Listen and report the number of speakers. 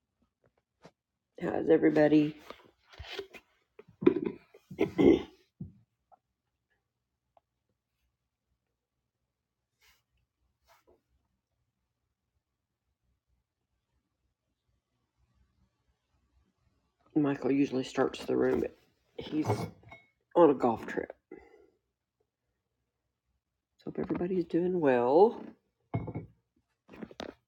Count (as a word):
one